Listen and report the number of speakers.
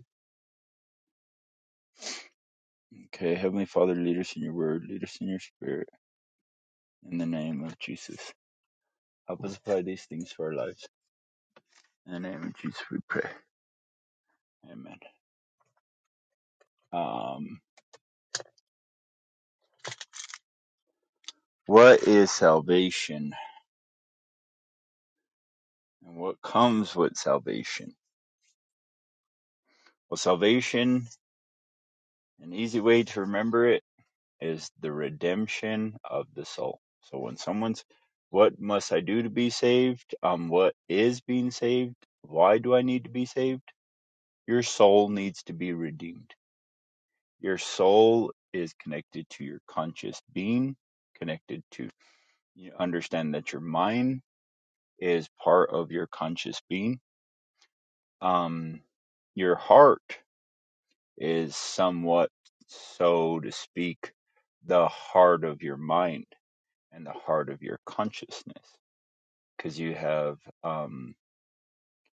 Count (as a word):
one